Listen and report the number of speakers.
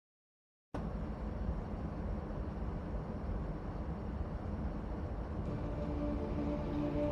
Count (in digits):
0